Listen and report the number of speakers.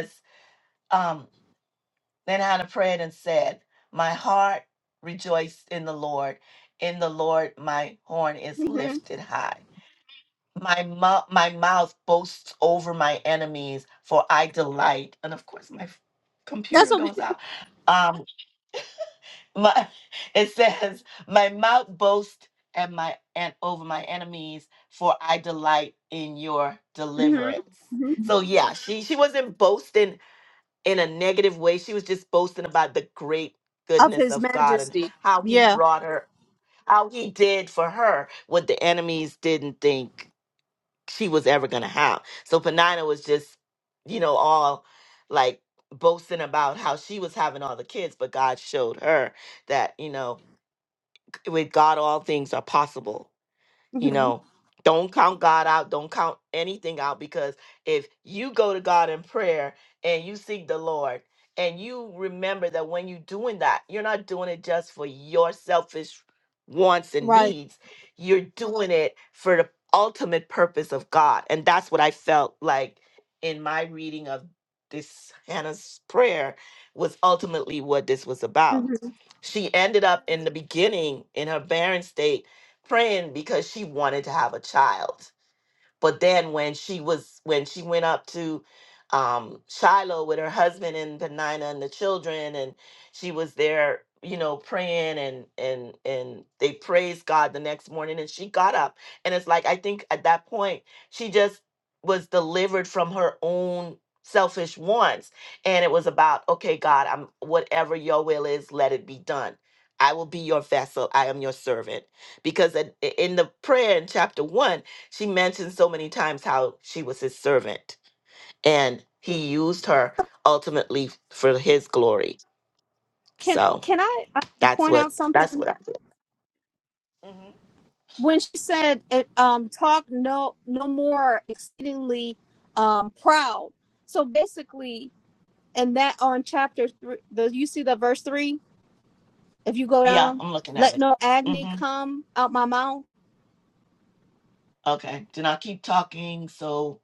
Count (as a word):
two